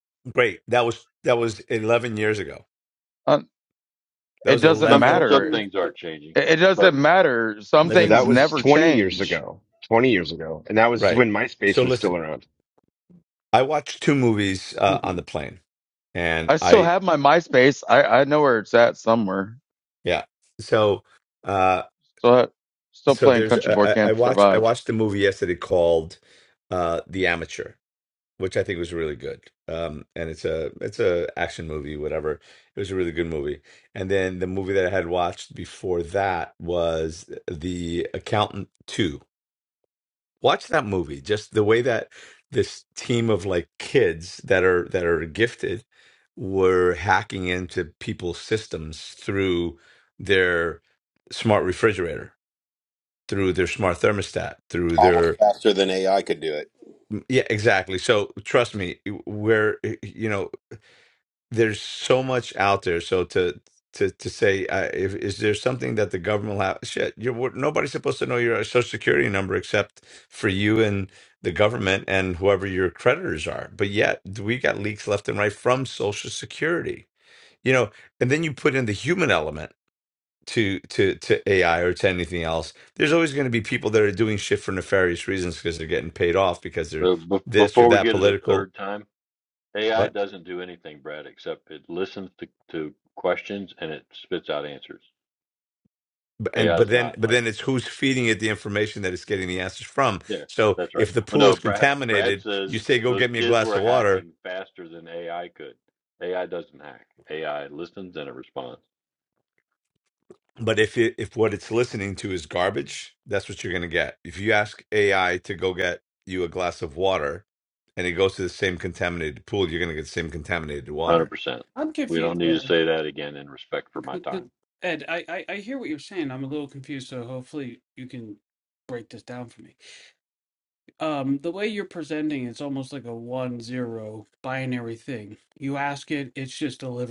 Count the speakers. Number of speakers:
six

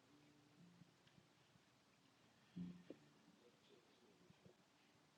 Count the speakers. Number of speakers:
zero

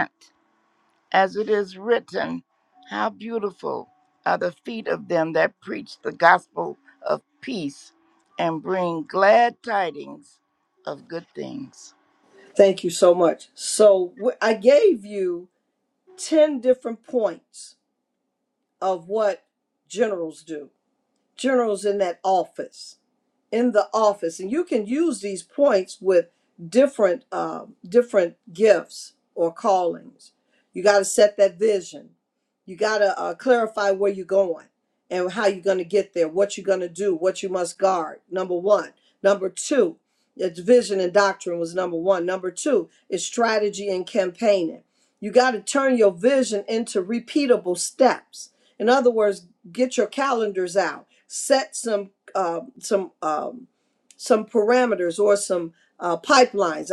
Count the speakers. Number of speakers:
two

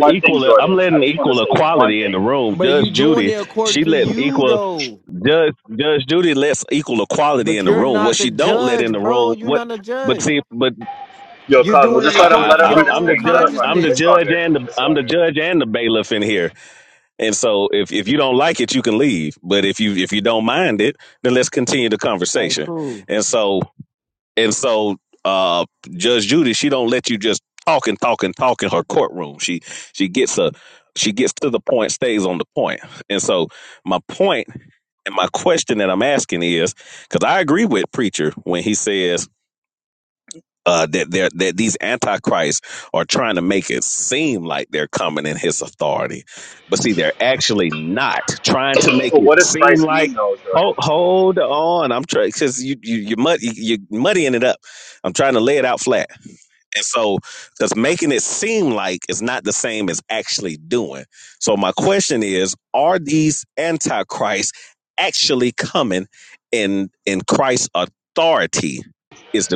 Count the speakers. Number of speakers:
three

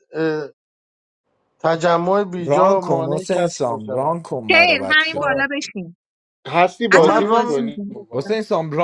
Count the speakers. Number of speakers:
four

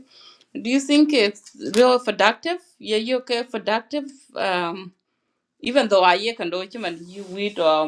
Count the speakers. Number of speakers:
one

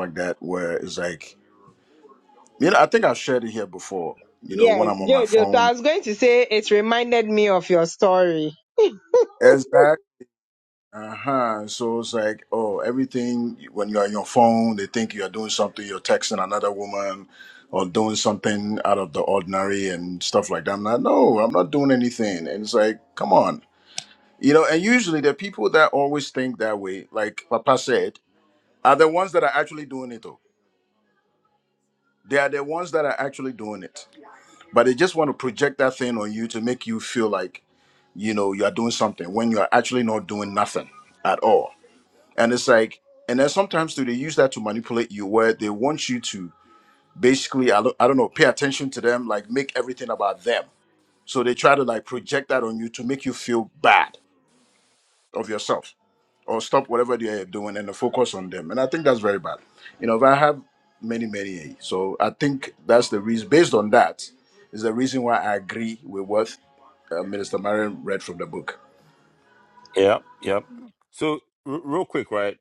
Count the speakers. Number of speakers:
three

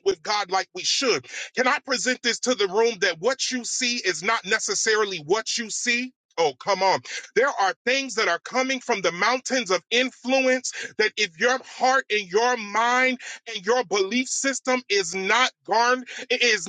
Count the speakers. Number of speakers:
one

